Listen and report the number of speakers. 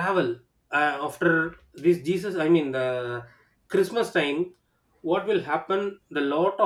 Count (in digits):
1